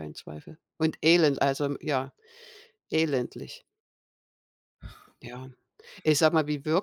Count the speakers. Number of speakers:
1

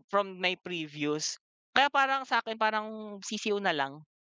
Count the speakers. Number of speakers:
1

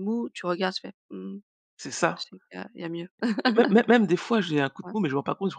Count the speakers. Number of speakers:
2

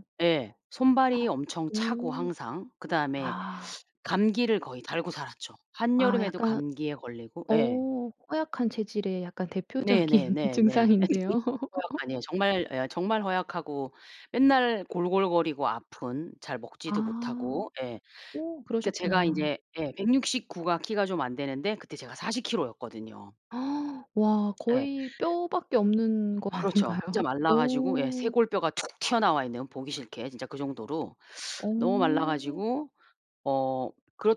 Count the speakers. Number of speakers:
2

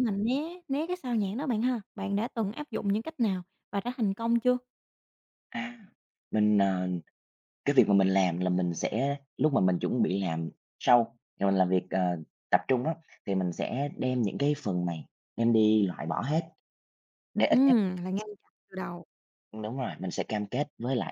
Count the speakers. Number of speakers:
2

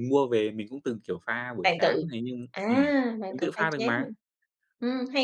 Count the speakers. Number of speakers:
2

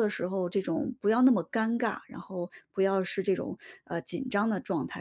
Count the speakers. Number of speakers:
1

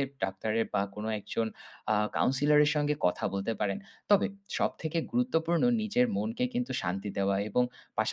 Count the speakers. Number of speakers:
1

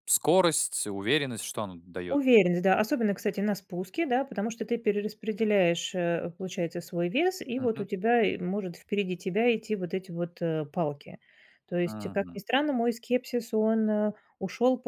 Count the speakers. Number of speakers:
2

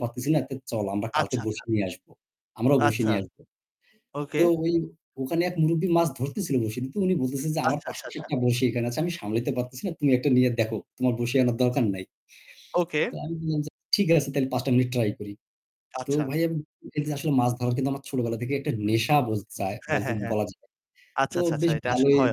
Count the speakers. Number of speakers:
2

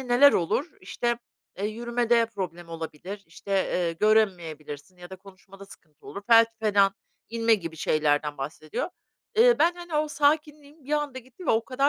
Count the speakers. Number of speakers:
1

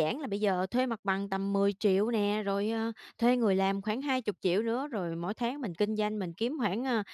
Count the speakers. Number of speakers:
1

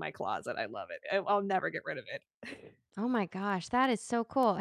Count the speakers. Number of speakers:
2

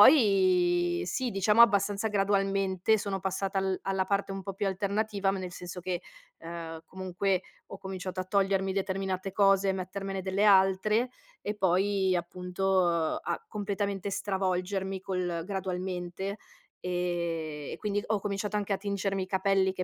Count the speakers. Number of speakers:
1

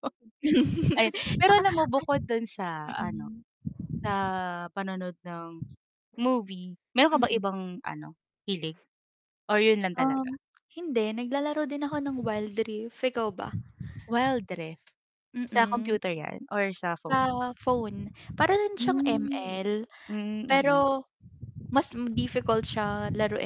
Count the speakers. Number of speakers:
2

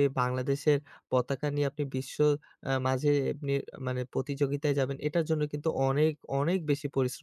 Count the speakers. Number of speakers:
1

